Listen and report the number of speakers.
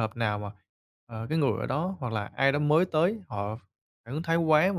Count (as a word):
one